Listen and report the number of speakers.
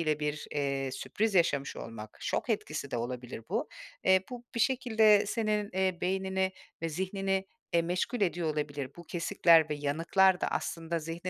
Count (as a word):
one